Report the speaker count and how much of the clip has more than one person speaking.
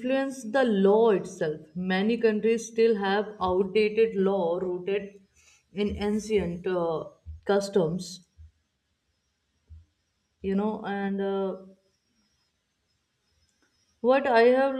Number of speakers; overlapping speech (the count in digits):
1, no overlap